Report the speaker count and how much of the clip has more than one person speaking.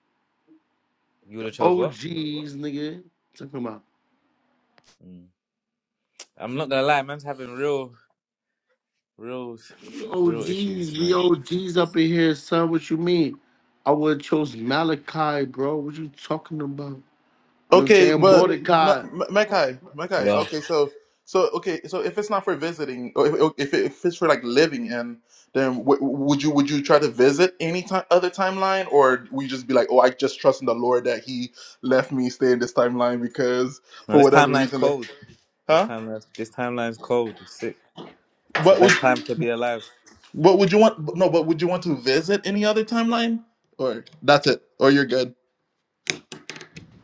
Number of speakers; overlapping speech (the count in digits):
3, about 10%